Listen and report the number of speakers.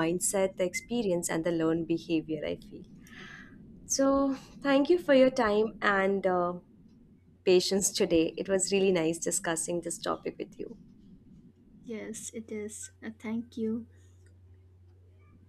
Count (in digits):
2